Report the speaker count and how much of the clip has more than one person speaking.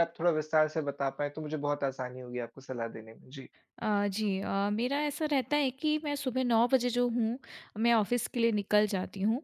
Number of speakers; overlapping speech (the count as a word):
two, no overlap